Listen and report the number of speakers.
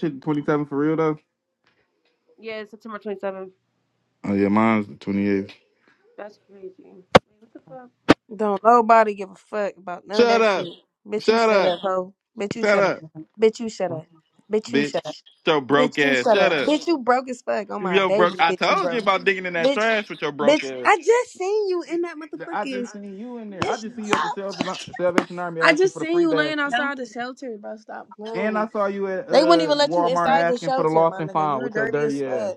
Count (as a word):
three